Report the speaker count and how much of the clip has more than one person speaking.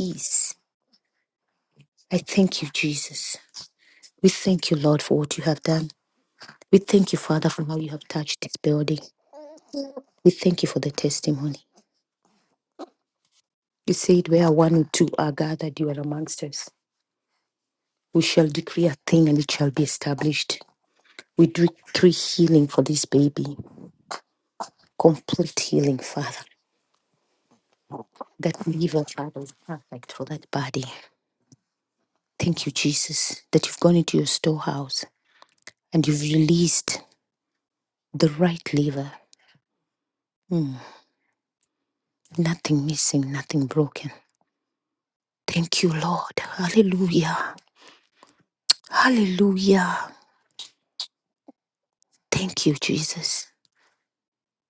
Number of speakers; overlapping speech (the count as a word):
one, no overlap